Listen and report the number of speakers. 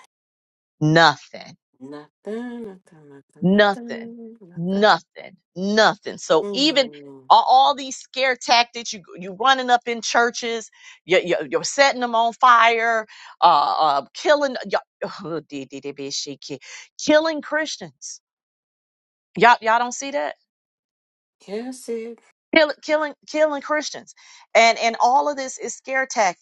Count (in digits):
2